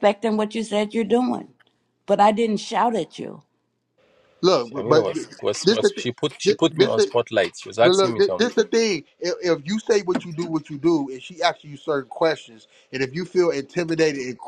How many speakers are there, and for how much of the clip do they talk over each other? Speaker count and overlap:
3, about 13%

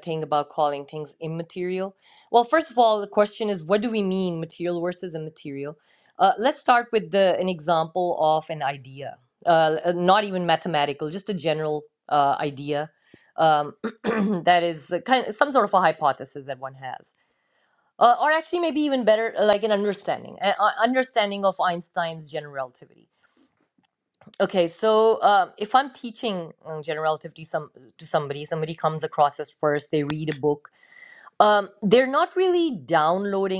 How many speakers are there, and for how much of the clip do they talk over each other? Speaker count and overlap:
1, no overlap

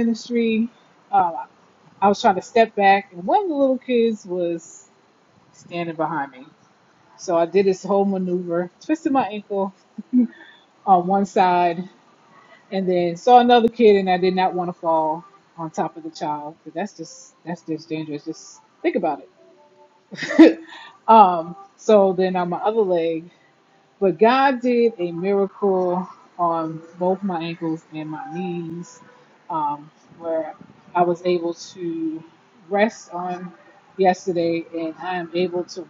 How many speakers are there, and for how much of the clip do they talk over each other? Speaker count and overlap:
1, no overlap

